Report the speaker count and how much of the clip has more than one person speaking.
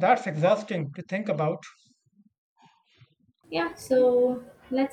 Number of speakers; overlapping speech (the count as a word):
two, no overlap